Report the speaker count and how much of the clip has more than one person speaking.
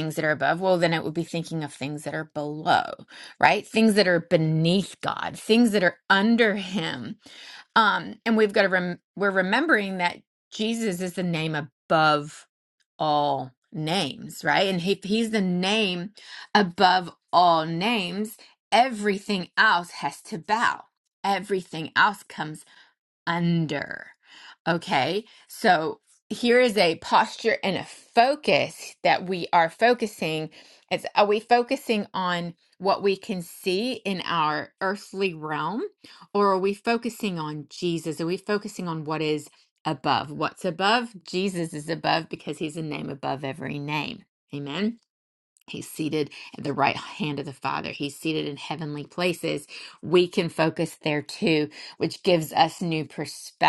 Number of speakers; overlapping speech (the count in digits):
1, no overlap